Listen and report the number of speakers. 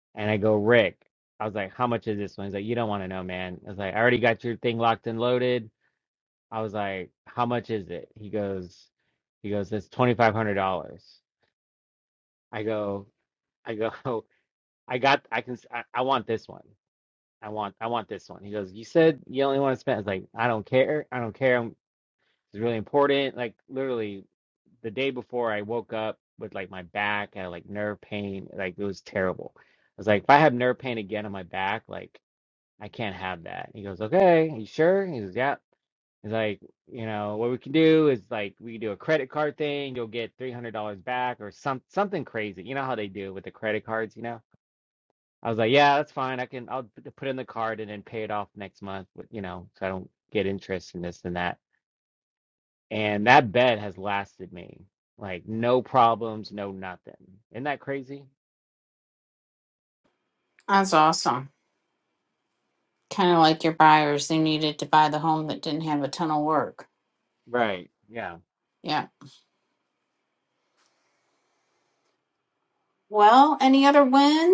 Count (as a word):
two